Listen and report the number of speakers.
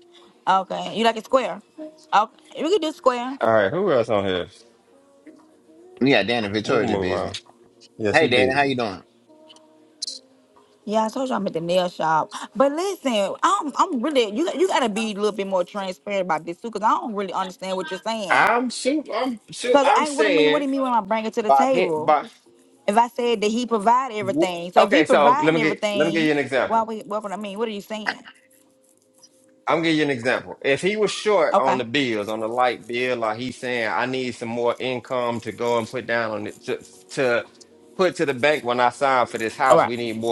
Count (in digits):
3